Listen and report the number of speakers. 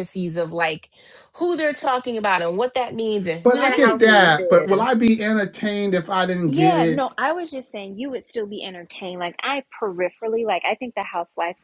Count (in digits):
3